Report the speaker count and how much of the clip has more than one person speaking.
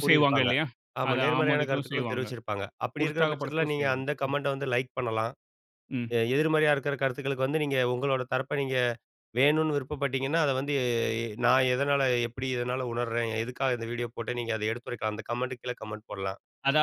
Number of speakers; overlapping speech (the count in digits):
2, about 19%